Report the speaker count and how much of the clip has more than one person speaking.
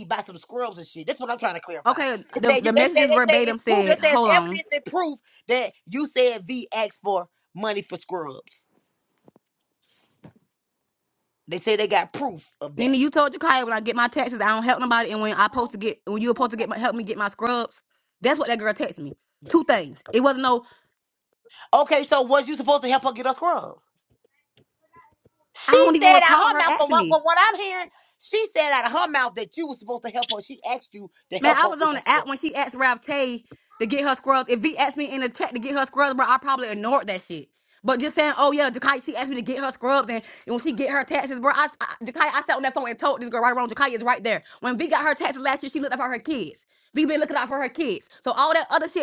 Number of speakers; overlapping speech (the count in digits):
2, about 10%